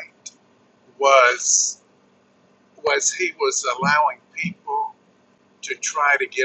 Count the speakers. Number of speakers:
1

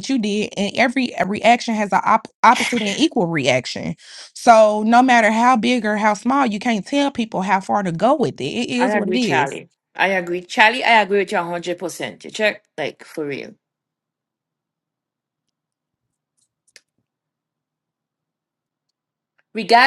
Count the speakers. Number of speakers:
2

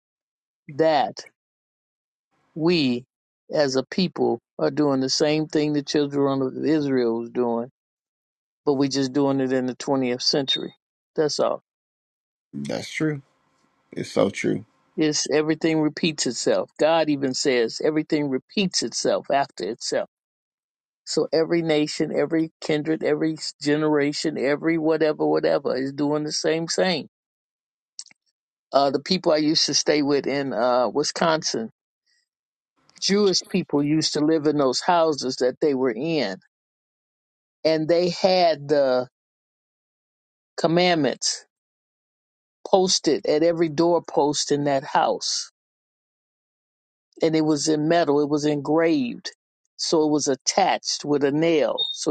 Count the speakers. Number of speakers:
2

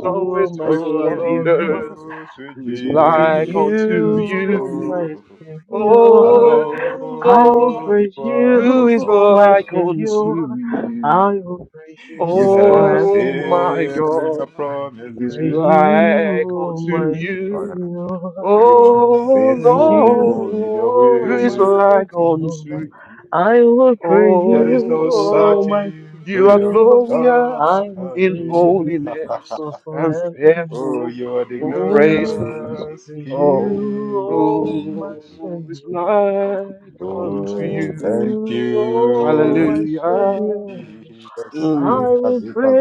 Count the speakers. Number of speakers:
3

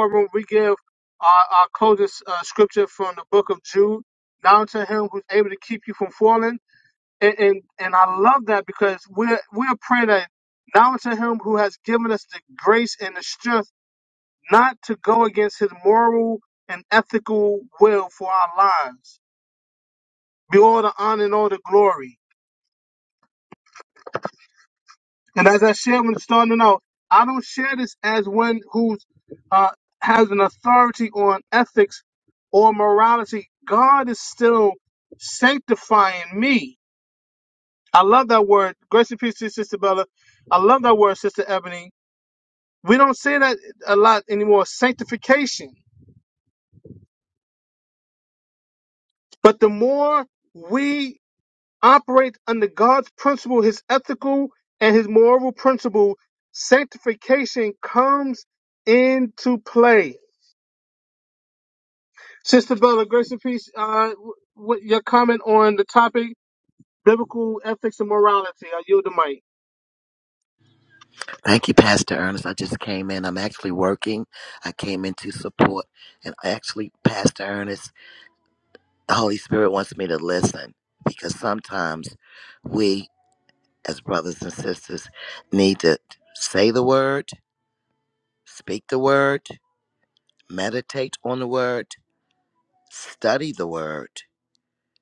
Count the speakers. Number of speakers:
2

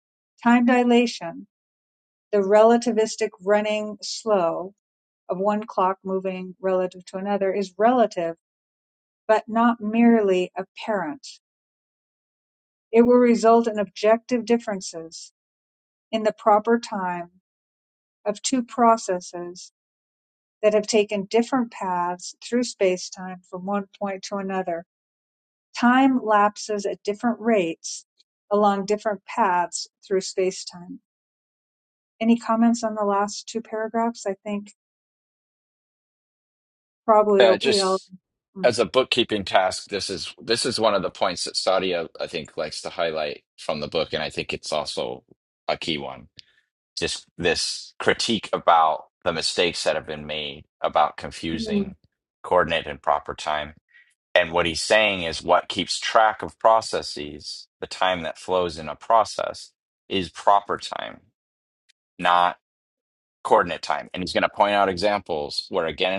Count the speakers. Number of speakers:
2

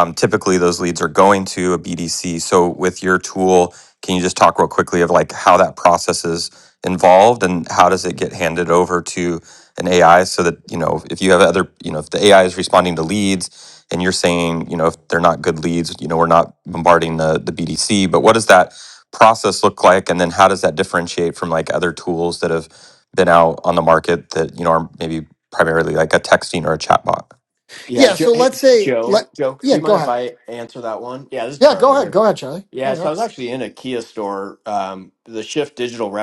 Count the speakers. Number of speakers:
3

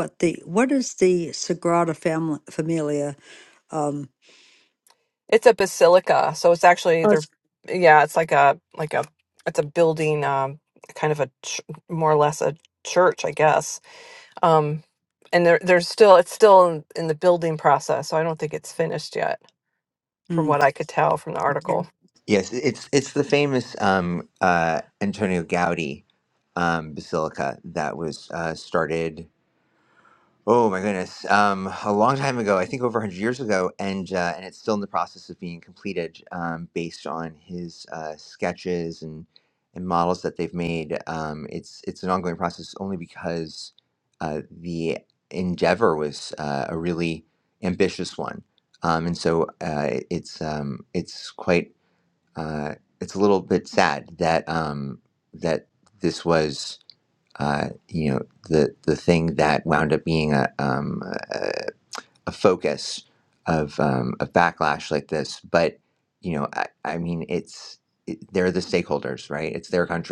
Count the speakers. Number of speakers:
3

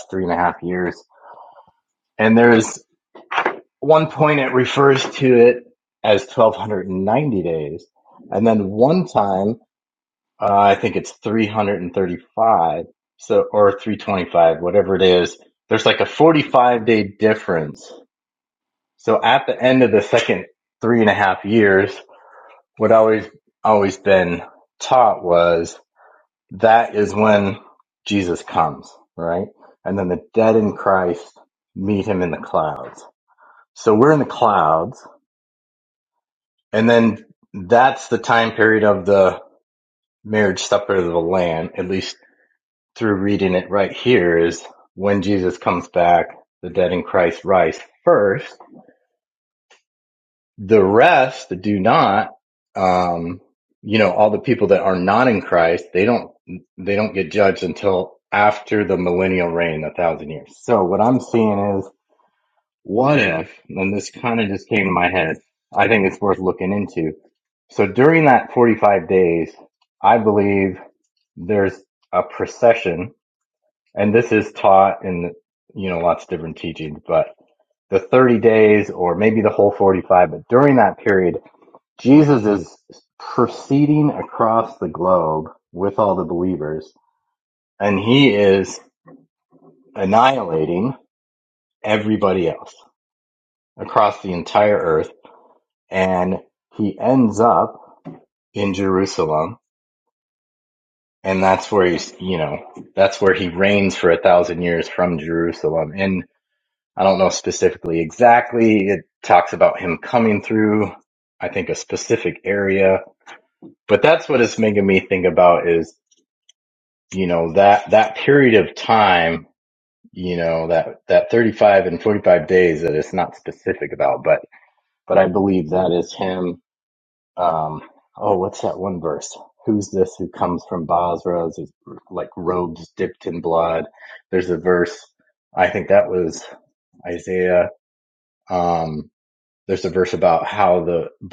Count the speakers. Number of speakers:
1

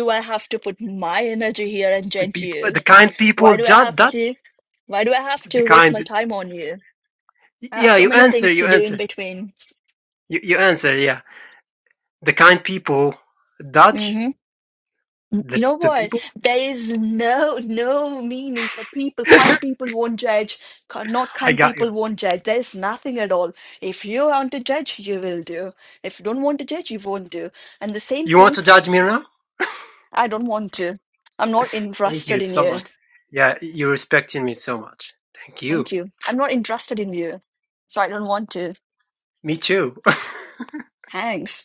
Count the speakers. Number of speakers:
2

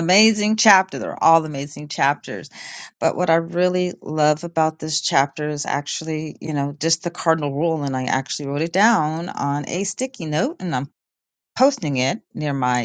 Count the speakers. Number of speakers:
1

